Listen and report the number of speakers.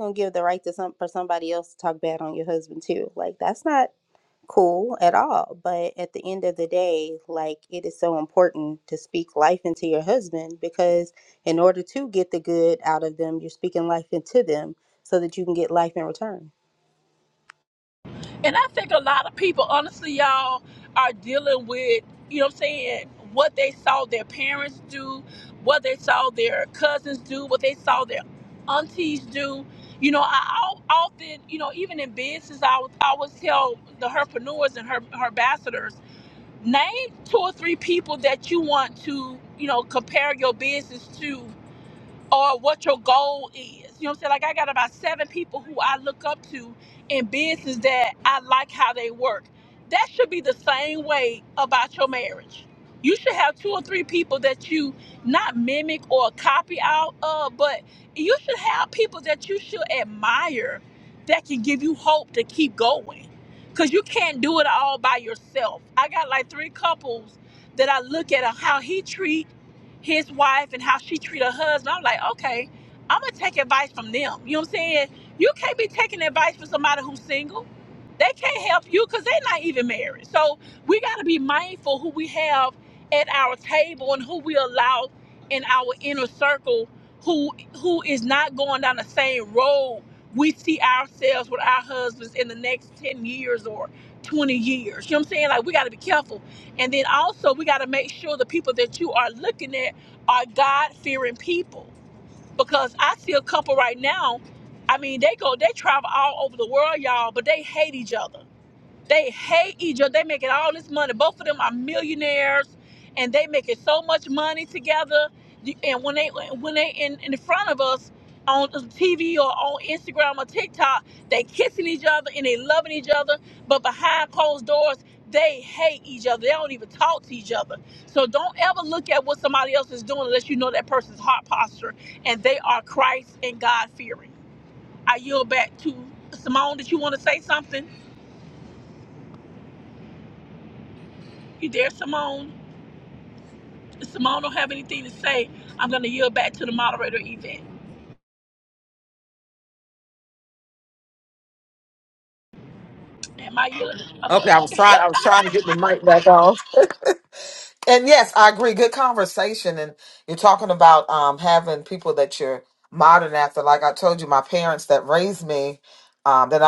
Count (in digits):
3